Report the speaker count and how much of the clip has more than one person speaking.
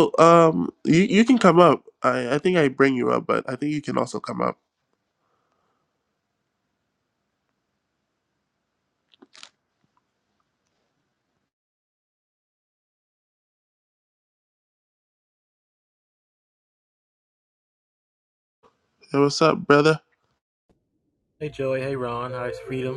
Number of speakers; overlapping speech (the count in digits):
2, no overlap